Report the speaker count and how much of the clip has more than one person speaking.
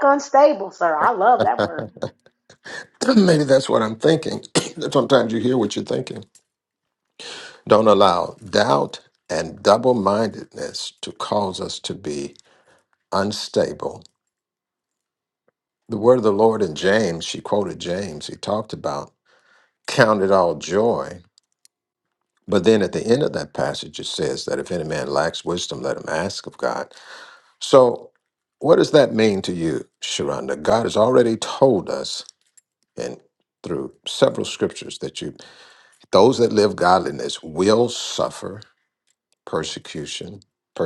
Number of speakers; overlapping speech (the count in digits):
2, no overlap